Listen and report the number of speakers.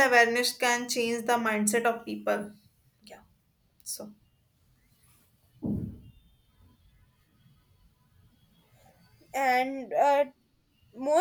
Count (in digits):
2